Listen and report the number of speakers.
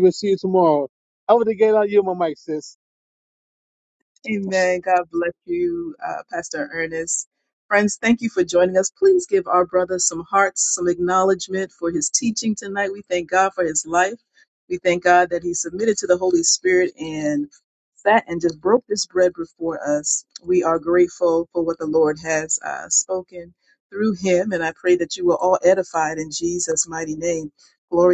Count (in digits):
2